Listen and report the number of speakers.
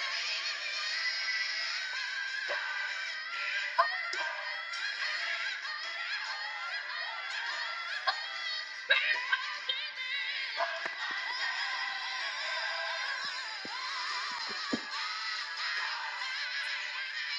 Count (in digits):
0